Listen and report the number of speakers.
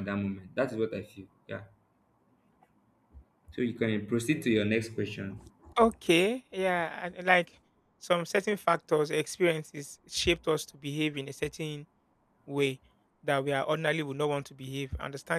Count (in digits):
2